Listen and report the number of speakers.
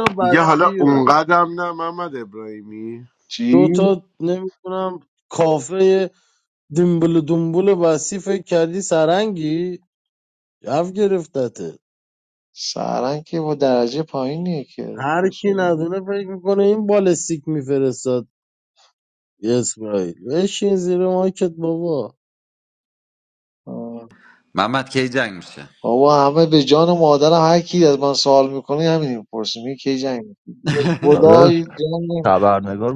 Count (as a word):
five